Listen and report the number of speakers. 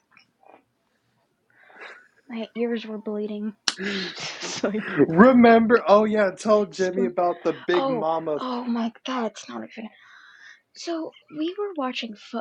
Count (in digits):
2